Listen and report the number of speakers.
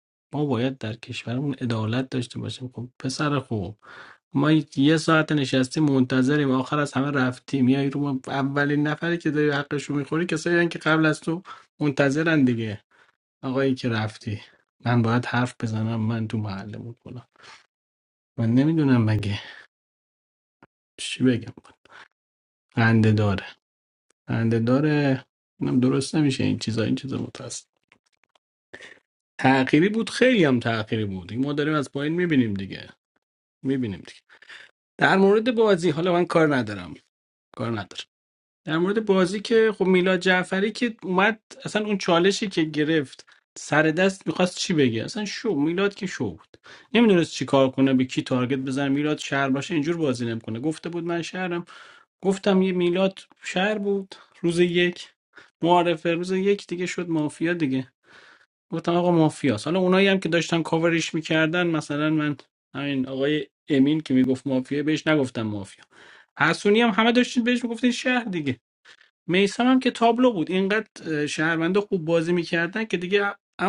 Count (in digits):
1